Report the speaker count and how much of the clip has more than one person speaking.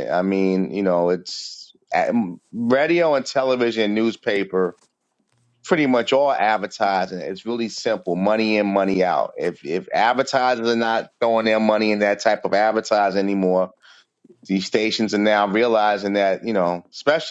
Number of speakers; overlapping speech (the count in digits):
1, no overlap